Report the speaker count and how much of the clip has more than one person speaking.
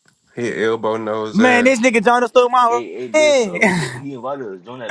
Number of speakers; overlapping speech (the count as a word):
three, about 20%